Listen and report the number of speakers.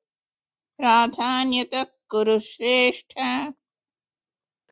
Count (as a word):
one